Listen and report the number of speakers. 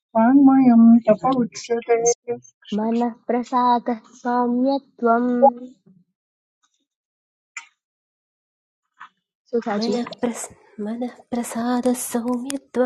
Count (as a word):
three